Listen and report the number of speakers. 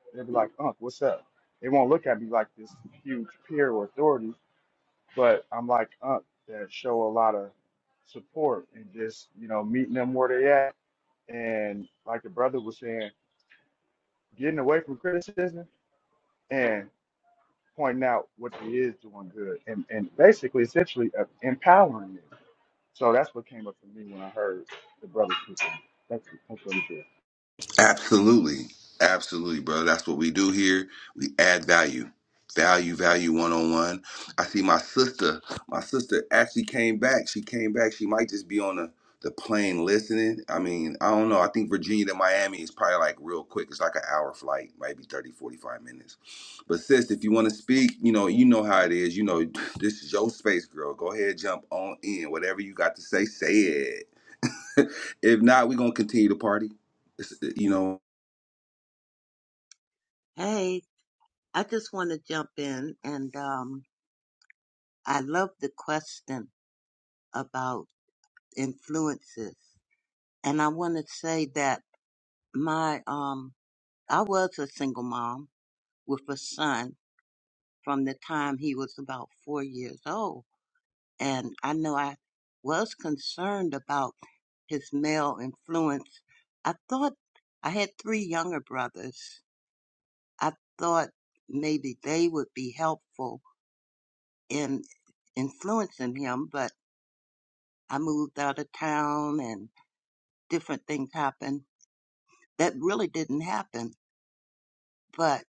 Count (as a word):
three